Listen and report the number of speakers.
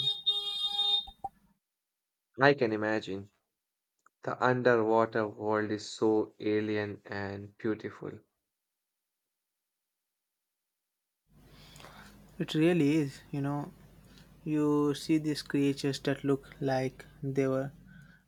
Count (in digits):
2